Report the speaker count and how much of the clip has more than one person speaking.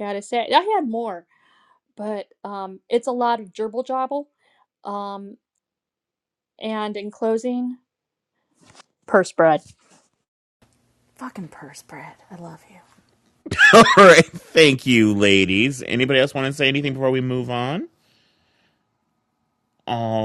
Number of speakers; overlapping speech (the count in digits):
3, no overlap